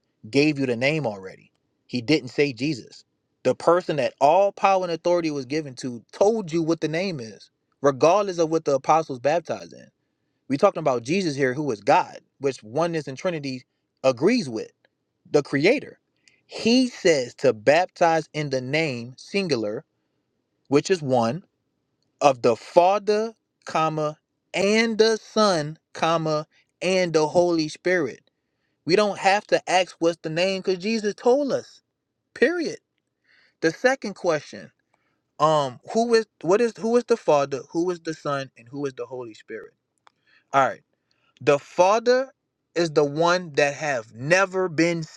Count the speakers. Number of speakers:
one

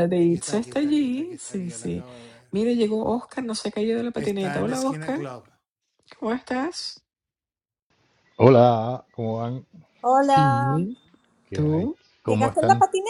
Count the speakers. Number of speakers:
three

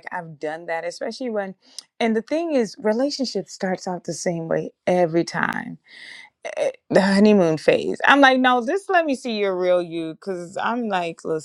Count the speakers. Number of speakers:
one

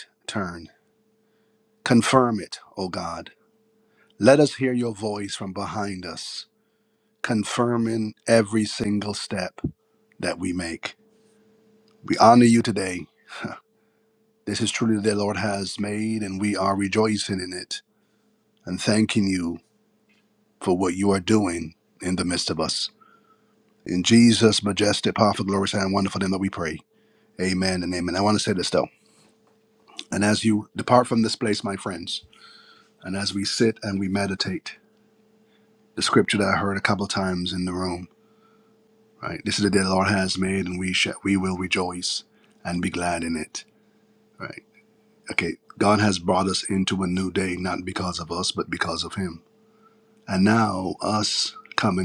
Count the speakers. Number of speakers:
one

